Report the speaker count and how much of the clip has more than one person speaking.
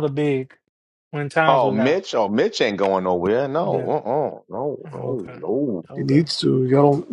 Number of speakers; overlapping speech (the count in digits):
3, about 20%